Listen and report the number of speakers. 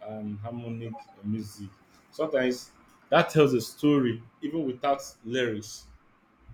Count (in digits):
1